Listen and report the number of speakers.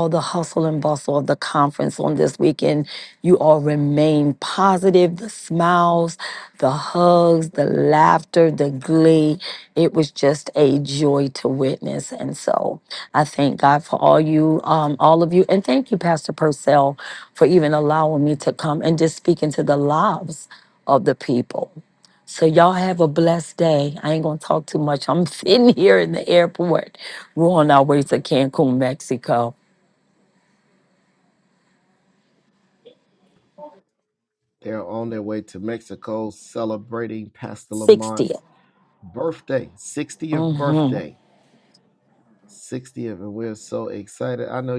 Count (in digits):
2